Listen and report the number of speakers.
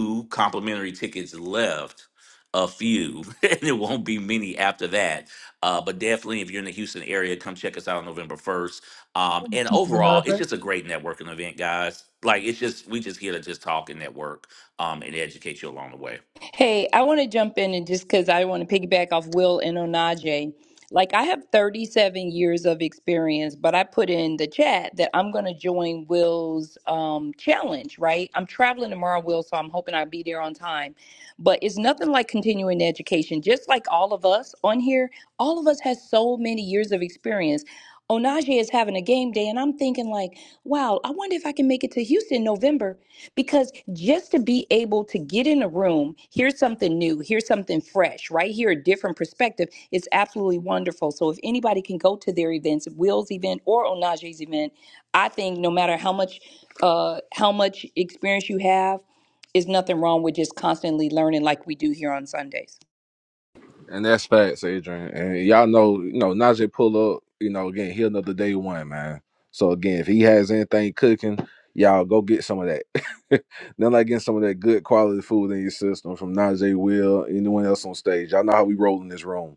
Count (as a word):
three